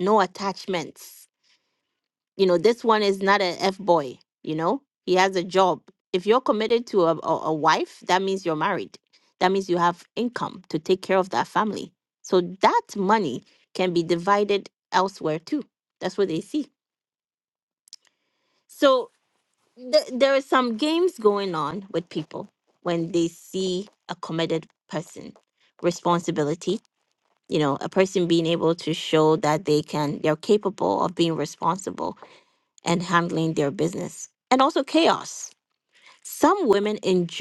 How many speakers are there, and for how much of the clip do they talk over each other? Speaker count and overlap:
1, no overlap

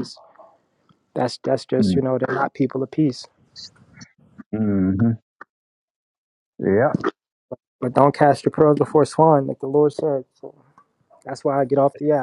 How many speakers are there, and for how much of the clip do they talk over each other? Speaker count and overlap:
2, about 2%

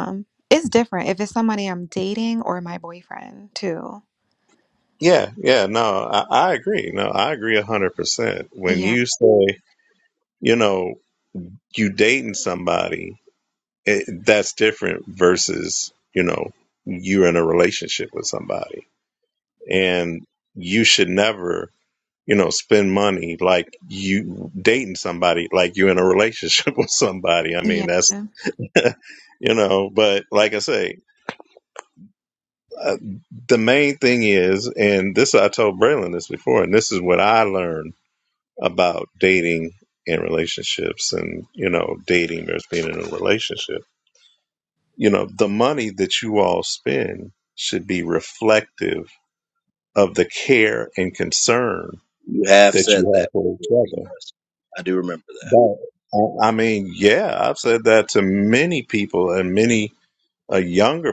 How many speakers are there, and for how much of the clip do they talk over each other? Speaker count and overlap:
3, about 4%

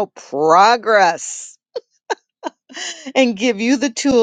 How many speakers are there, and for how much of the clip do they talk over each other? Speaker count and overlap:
1, no overlap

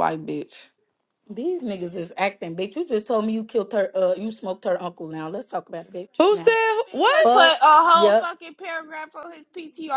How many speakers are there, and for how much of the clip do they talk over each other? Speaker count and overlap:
3, about 13%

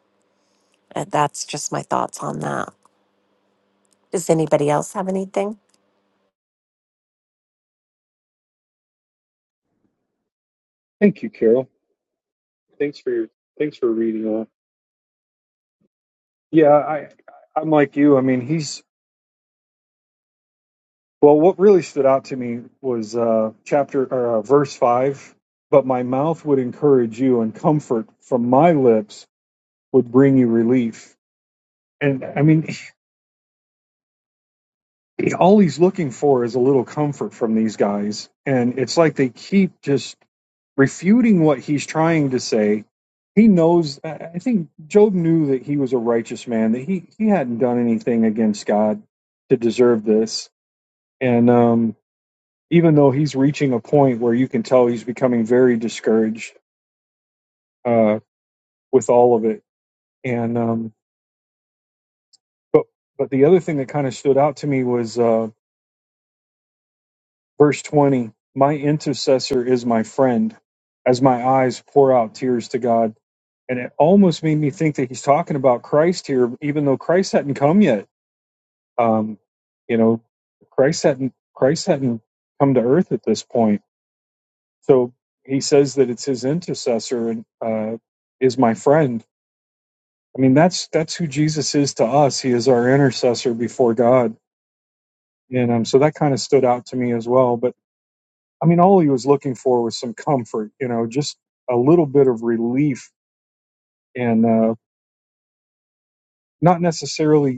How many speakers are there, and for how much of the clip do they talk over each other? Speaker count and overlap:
2, no overlap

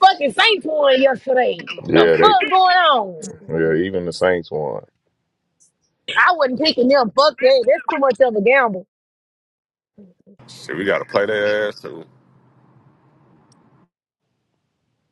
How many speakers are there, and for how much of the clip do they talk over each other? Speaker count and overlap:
3, about 2%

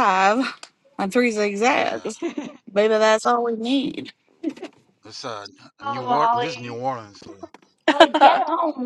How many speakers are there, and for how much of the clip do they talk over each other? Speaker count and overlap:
3, about 17%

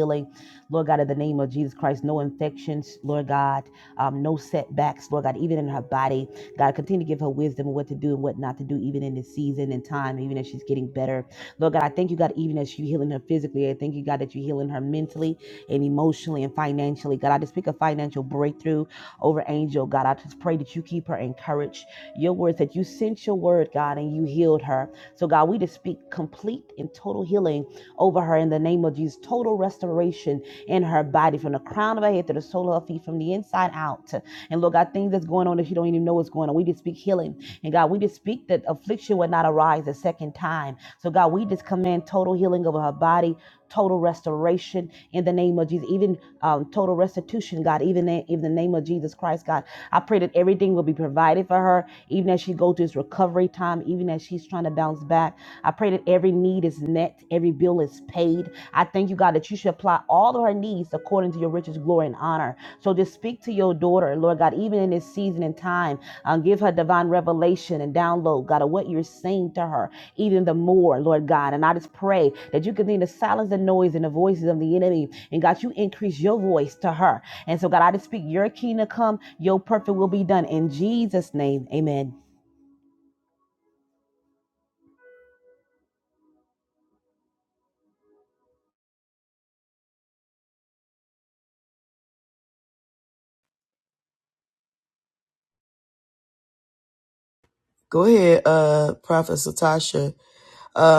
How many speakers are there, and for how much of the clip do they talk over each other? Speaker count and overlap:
2, no overlap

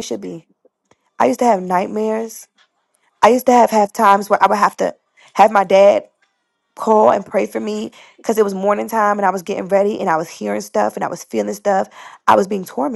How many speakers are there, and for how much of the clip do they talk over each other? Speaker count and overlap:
1, no overlap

